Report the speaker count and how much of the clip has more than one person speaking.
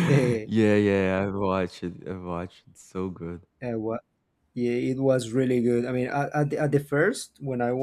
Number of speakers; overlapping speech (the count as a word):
two, under 1%